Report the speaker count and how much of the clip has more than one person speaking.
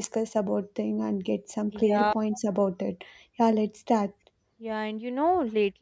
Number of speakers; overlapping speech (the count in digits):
2, about 7%